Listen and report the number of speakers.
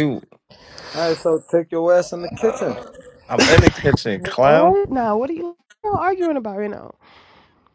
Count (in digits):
3